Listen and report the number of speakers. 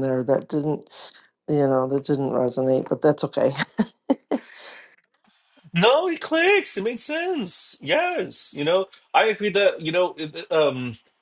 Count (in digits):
2